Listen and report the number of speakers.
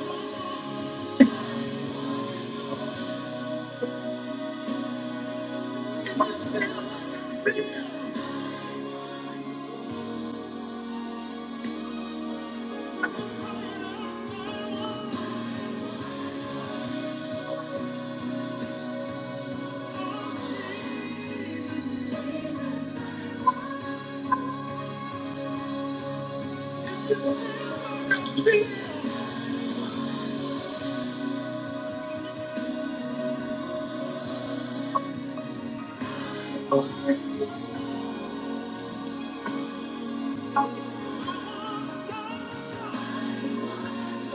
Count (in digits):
0